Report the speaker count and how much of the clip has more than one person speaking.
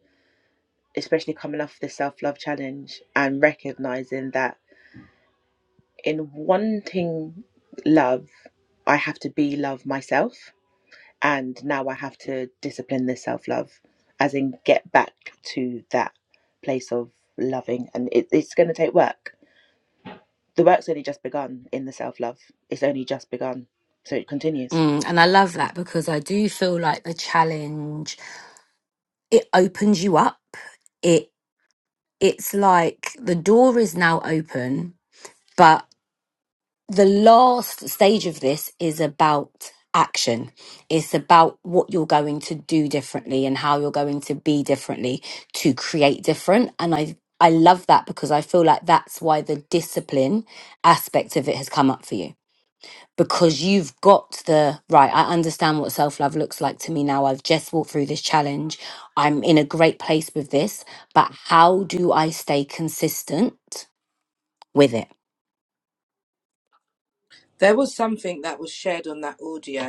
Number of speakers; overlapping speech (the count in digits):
3, no overlap